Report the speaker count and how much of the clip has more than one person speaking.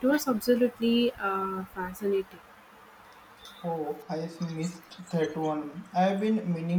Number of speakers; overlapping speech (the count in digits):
2, no overlap